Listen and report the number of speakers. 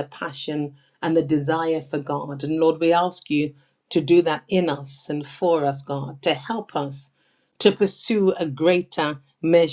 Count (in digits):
1